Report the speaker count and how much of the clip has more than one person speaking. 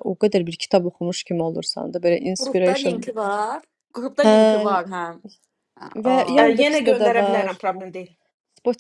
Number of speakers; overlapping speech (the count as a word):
four, about 25%